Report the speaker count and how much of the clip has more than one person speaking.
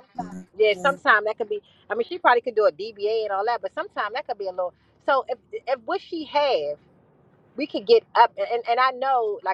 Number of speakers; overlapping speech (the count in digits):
1, no overlap